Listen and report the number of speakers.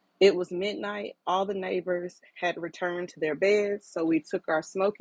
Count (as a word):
one